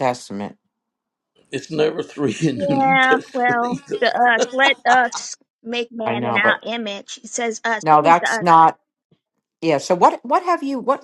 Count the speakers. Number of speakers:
3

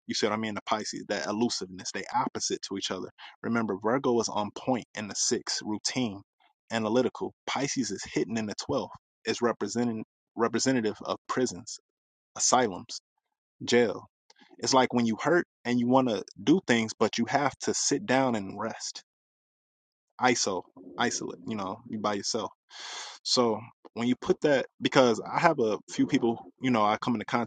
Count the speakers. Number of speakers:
1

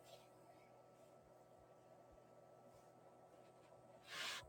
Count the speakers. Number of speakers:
0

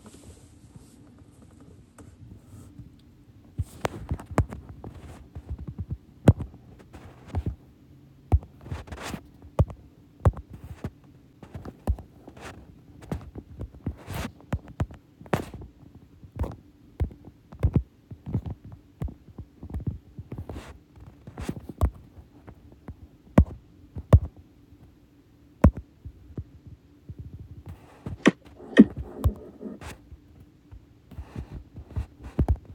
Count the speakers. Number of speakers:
0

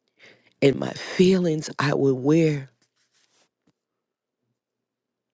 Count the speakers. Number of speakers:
1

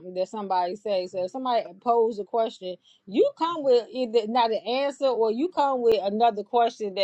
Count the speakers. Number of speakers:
1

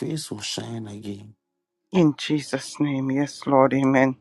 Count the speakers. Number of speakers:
2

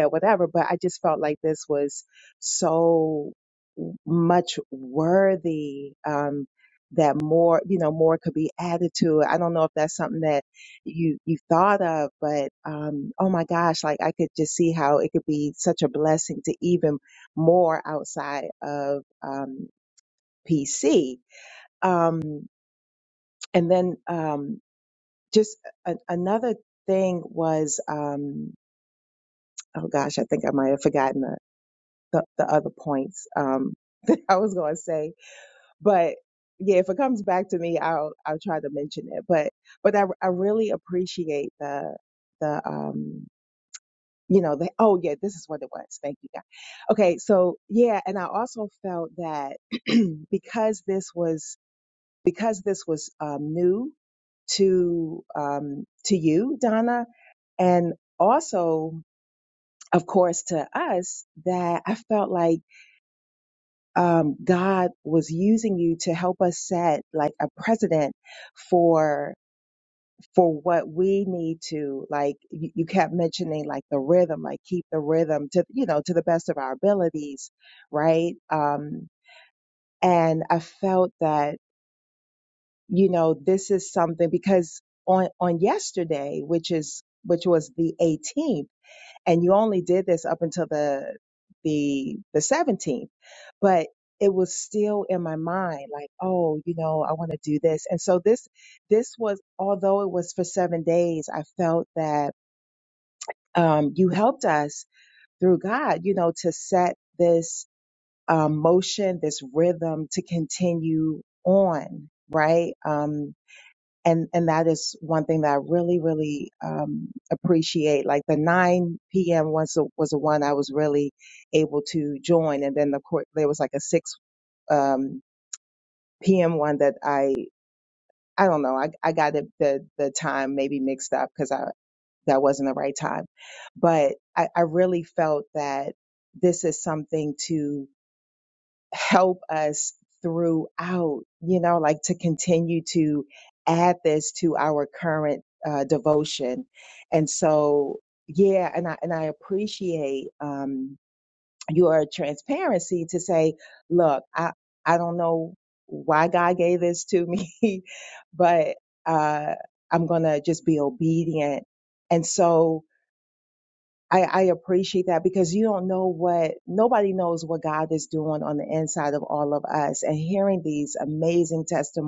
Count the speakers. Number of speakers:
1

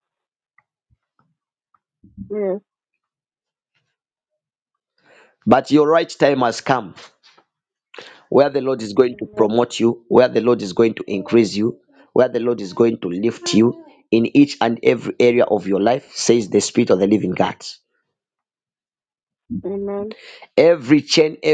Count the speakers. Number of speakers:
2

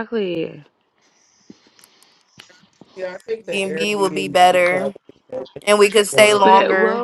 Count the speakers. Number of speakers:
3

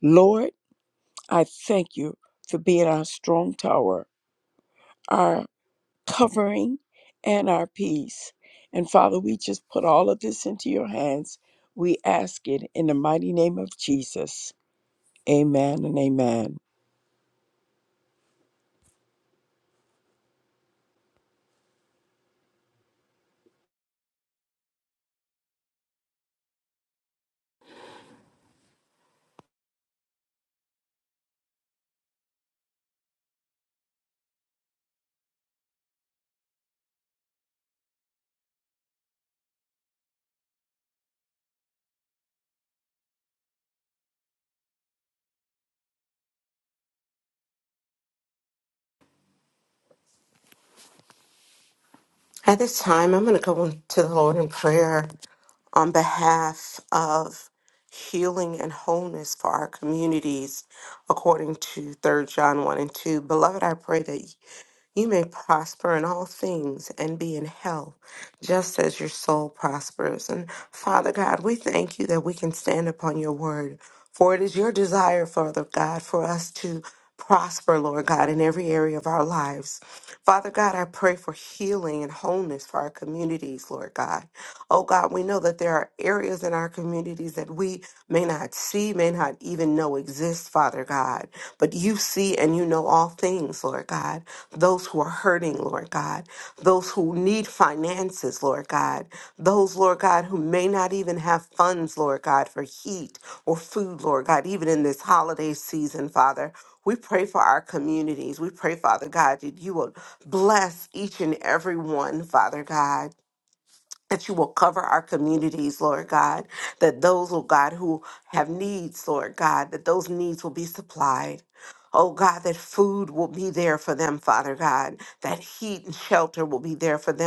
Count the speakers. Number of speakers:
2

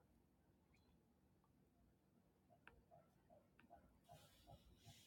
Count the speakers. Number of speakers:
0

